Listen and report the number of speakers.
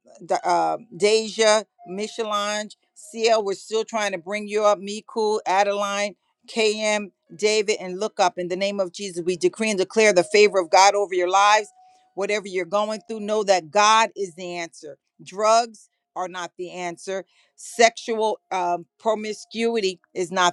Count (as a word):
one